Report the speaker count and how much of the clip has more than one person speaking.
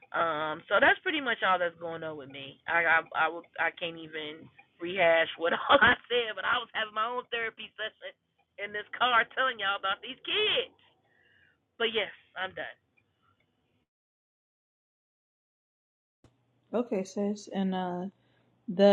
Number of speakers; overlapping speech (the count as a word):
two, no overlap